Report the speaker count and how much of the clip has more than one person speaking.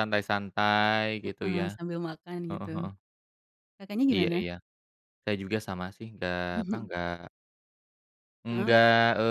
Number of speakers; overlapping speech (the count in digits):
2, about 19%